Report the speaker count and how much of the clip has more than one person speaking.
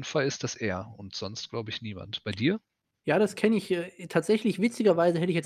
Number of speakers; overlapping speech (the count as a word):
two, no overlap